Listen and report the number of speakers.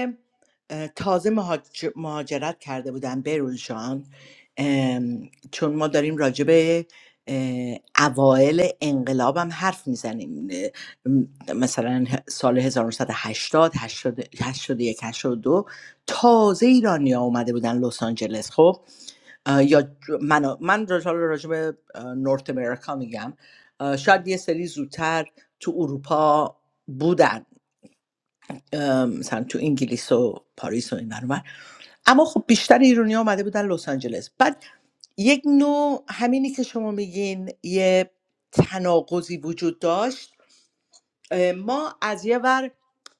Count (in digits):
1